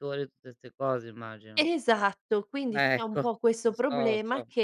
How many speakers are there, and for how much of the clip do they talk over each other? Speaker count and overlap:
2, about 26%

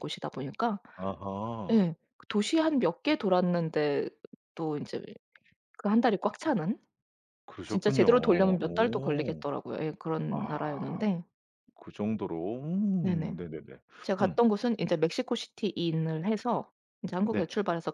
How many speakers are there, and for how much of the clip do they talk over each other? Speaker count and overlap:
2, about 16%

